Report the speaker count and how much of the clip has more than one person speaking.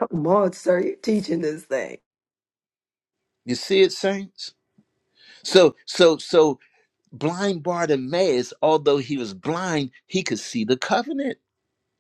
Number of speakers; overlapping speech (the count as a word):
two, no overlap